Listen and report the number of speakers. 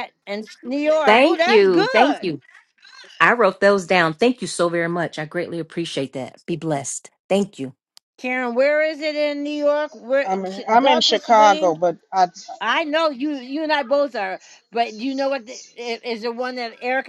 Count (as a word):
three